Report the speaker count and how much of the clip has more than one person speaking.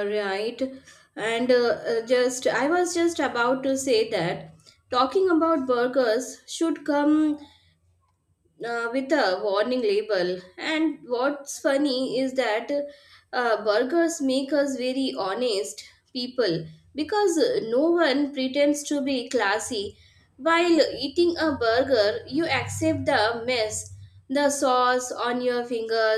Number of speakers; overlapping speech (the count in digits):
1, no overlap